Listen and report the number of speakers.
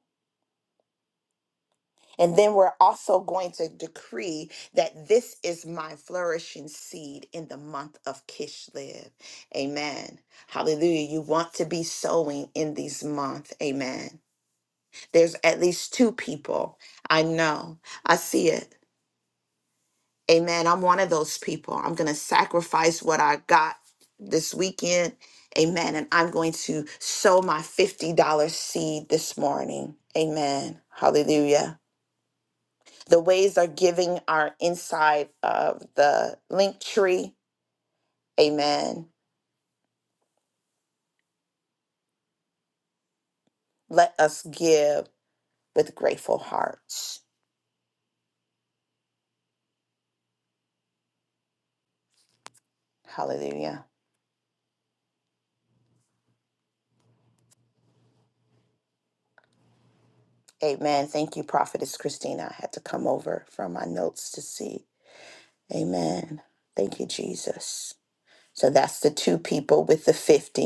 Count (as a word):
one